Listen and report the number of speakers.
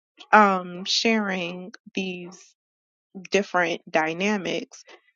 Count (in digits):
1